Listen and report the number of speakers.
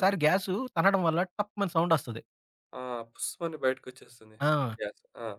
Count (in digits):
2